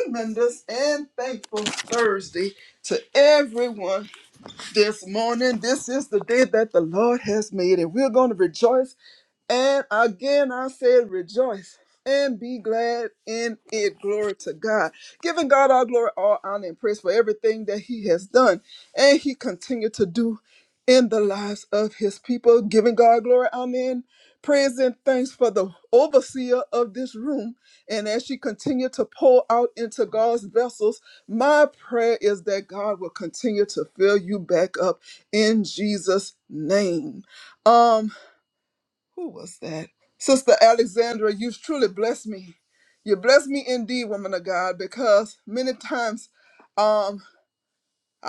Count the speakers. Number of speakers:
1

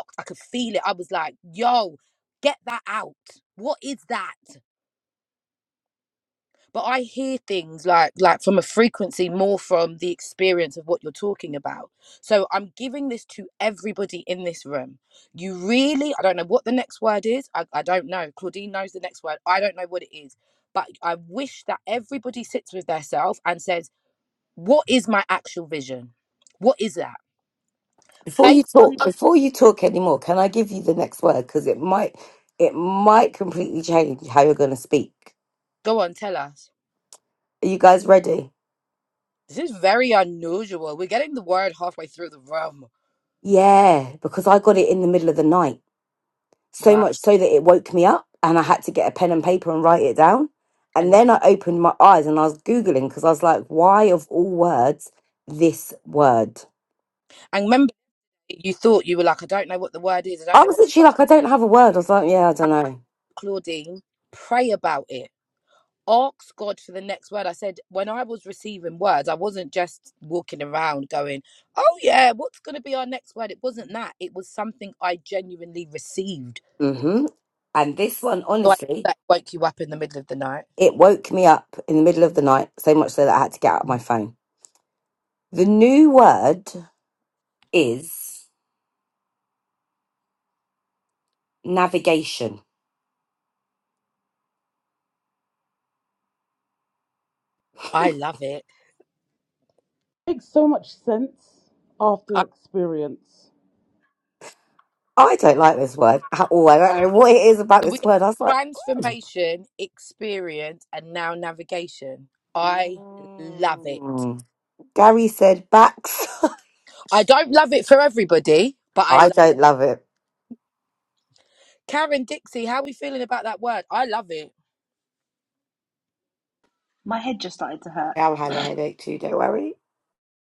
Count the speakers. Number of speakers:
4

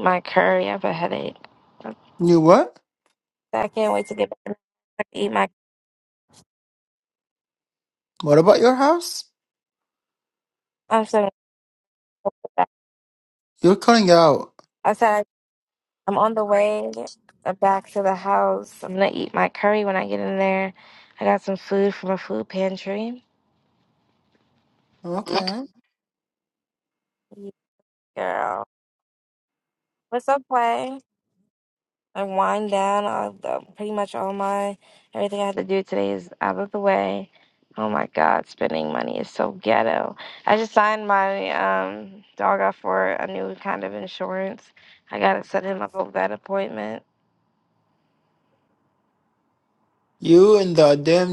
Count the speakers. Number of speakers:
2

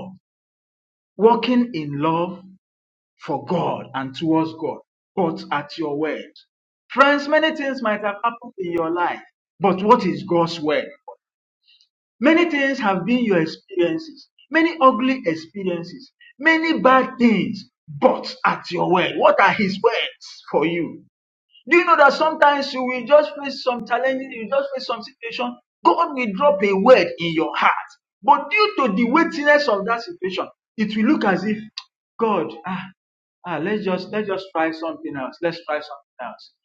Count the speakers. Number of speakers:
1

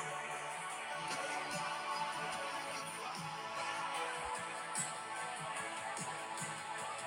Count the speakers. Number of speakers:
0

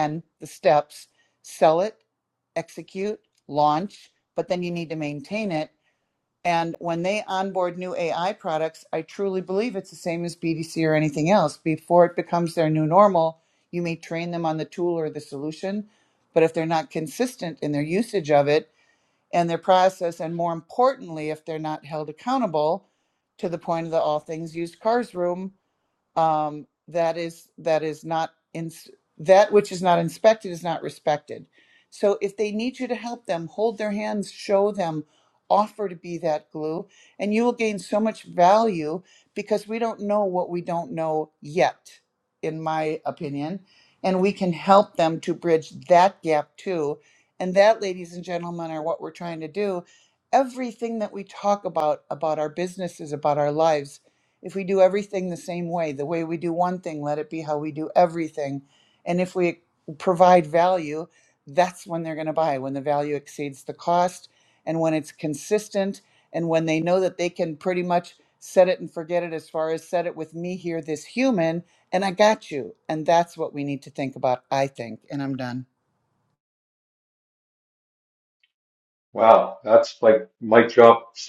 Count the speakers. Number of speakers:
2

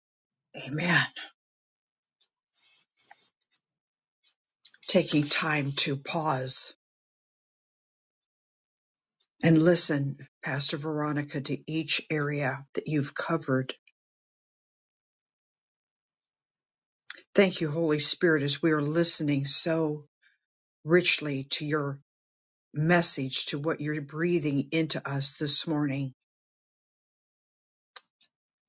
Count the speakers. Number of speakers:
1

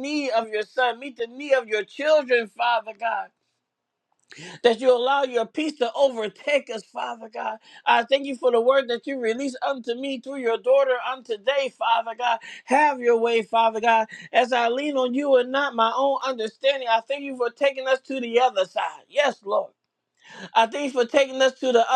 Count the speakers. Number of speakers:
1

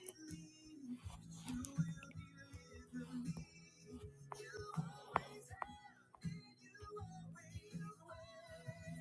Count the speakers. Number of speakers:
0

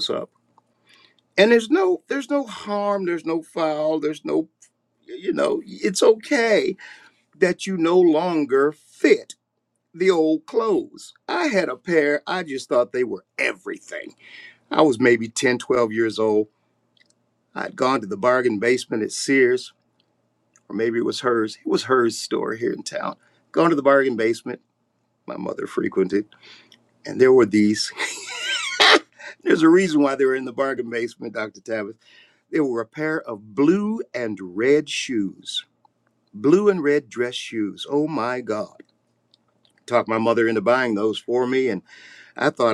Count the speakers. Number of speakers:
1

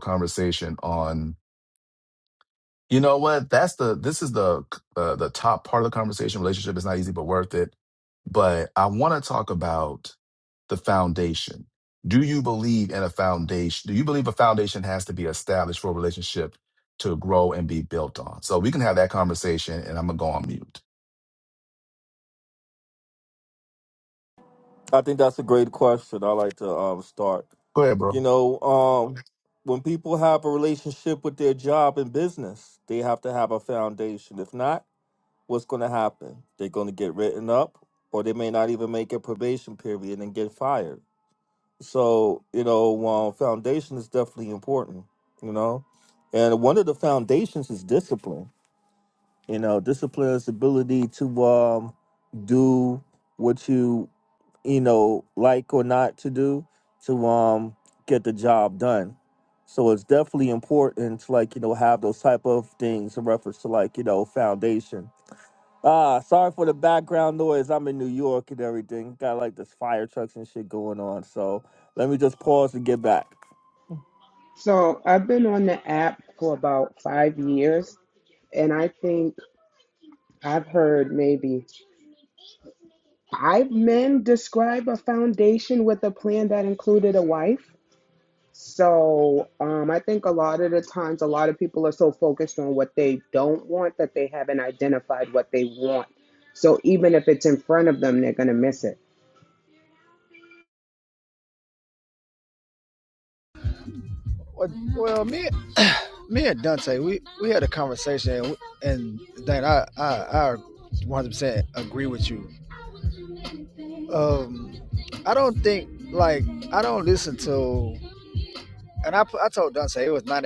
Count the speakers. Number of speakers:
4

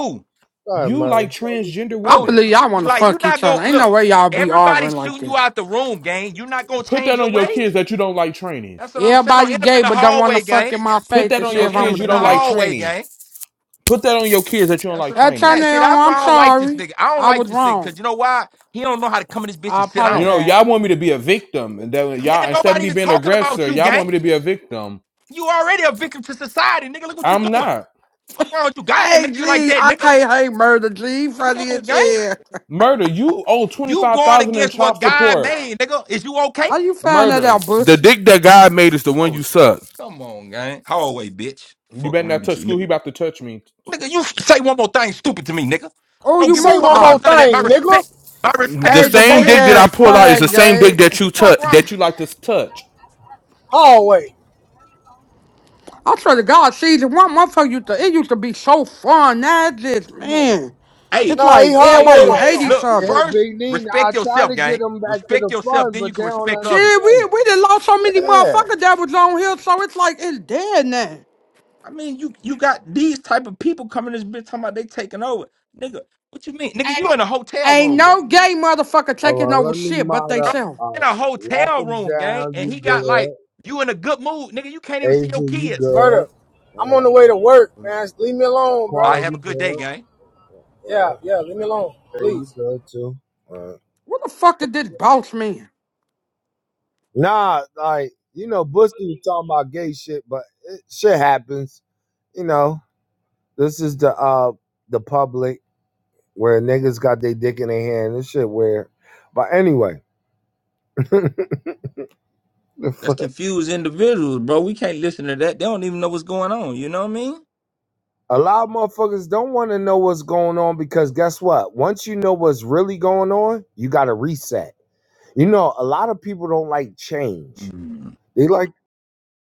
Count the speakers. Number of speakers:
5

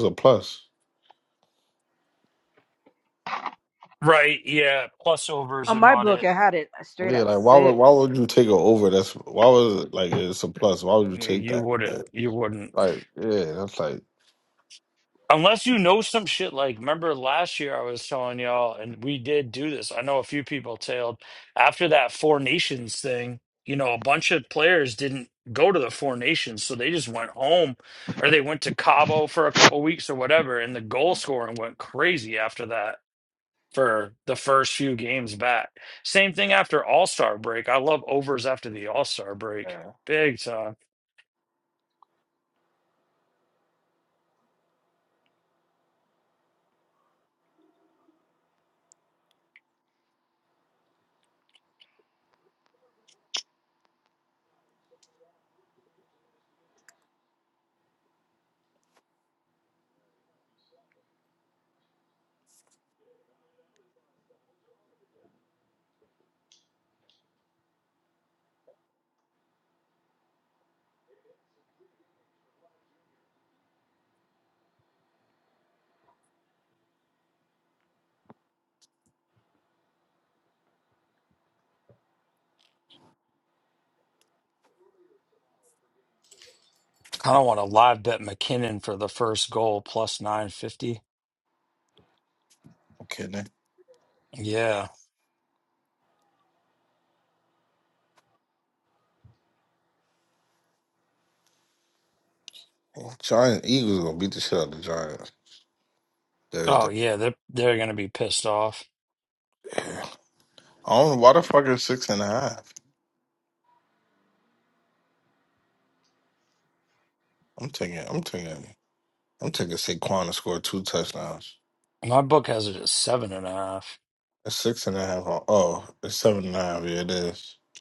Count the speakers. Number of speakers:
3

